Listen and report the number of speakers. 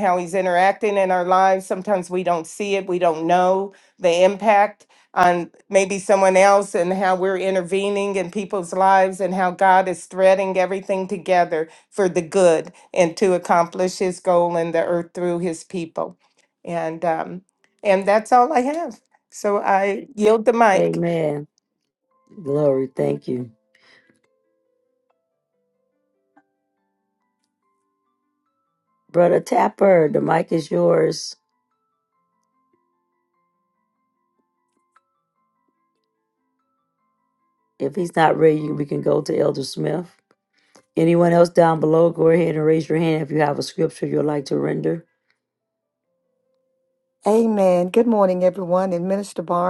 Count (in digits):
3